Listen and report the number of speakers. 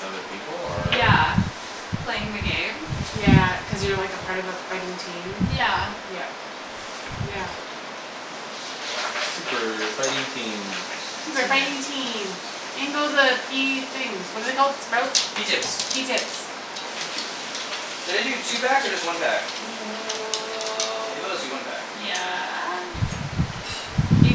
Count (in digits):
4